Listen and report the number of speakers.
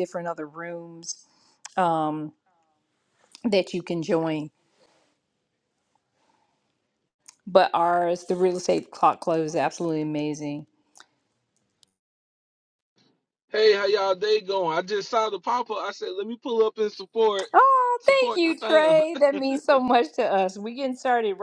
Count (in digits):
2